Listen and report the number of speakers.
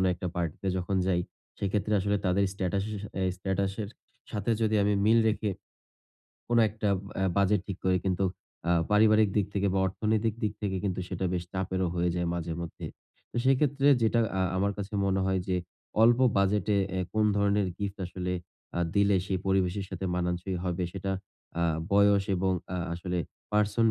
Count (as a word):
one